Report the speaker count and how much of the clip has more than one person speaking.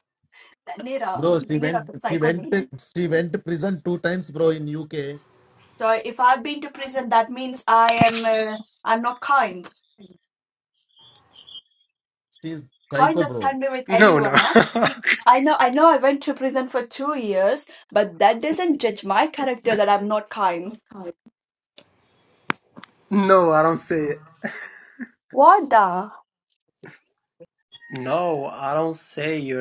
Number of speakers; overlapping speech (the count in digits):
3, about 7%